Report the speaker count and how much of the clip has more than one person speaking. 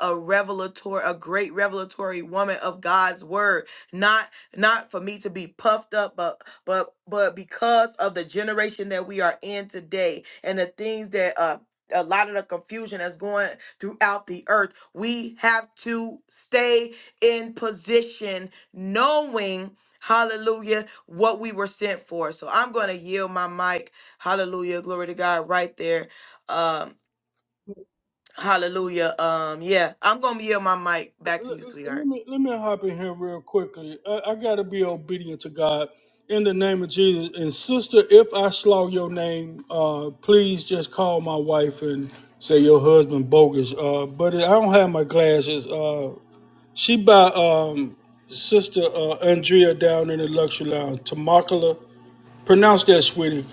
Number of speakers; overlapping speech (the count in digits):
2, under 1%